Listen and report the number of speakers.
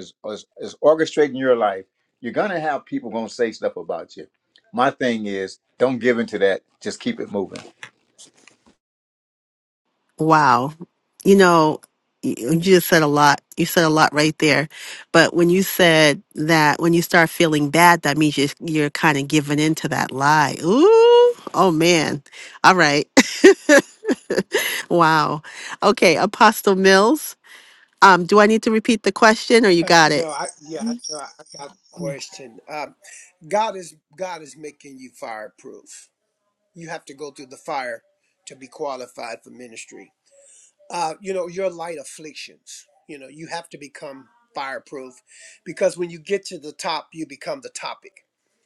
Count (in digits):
3